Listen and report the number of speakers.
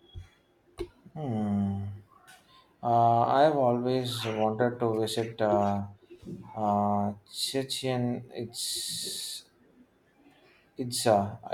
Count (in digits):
1